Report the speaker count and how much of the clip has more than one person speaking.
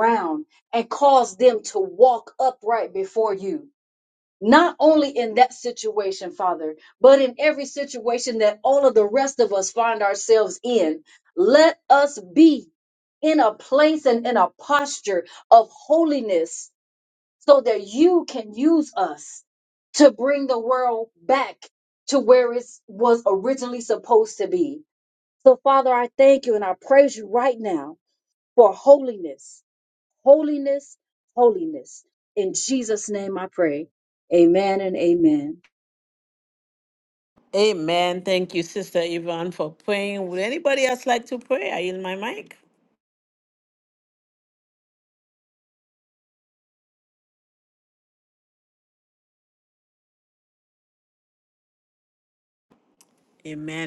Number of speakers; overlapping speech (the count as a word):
two, no overlap